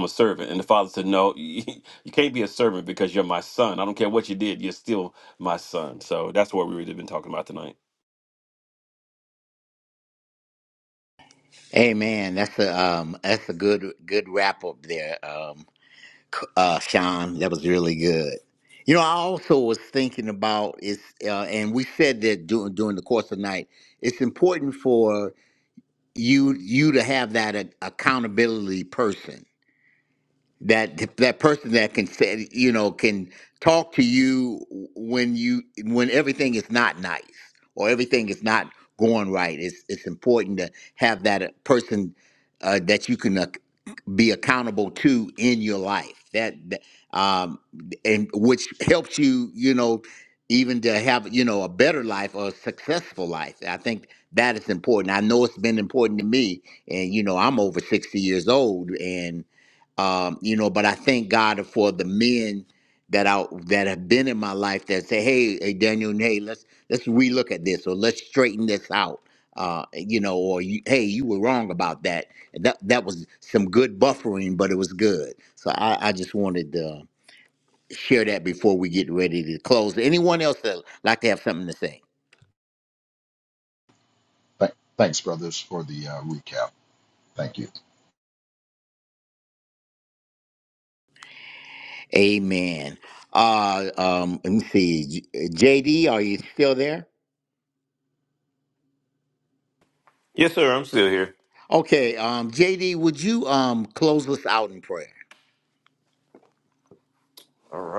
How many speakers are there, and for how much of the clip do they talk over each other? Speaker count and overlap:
4, no overlap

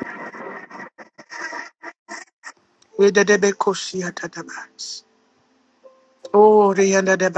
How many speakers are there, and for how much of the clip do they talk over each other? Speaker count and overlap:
1, no overlap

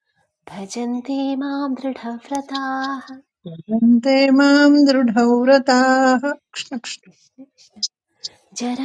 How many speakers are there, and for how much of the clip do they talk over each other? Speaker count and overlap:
2, no overlap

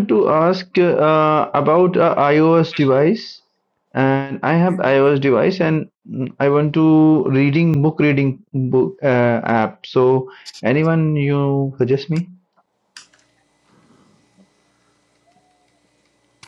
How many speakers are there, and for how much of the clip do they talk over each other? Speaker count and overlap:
1, no overlap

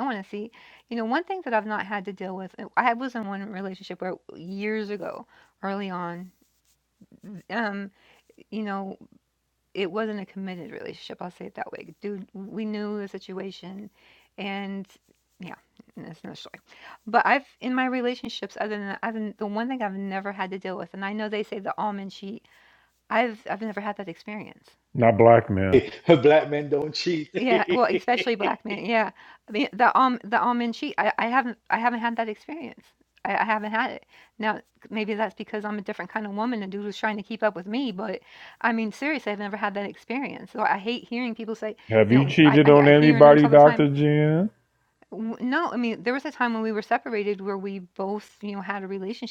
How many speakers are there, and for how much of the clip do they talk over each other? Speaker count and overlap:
3, about 4%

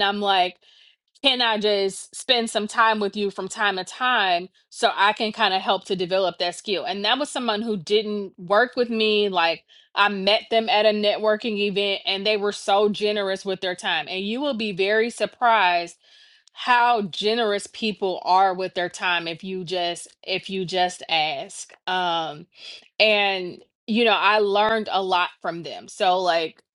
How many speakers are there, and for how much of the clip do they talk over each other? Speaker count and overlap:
1, no overlap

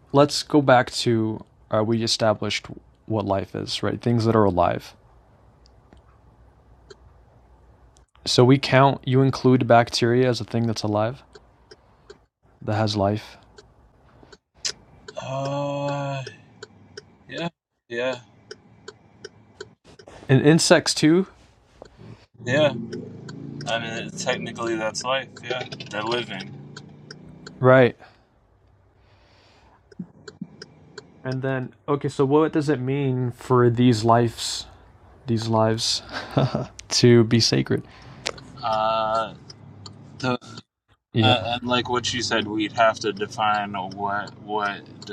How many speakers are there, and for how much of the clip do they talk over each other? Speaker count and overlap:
2, under 1%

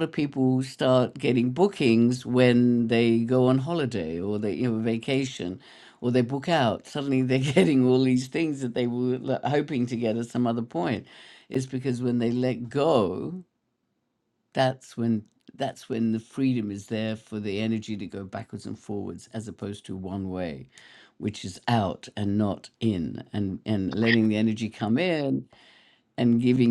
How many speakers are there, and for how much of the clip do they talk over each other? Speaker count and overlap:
1, no overlap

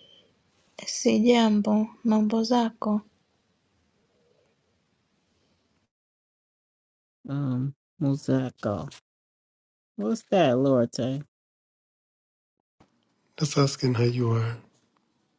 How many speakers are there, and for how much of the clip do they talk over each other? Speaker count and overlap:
3, no overlap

